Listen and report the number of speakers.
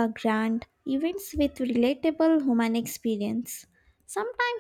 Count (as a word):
one